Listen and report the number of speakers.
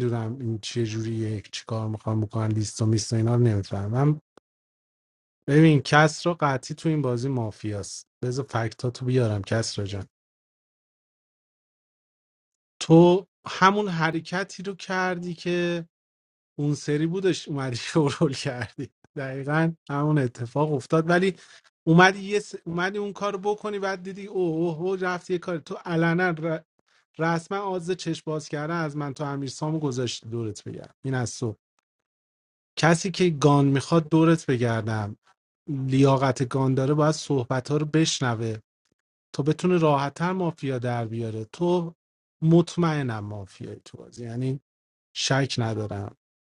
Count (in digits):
1